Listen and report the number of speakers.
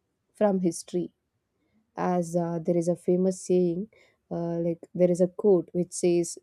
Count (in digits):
1